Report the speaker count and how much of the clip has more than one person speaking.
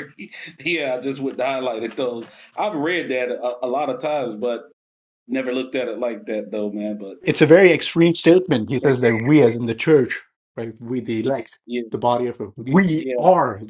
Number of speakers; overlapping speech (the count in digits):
2, about 2%